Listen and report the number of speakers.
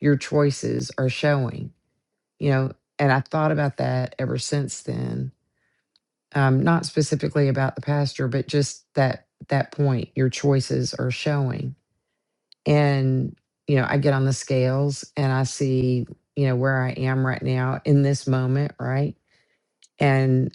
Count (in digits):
1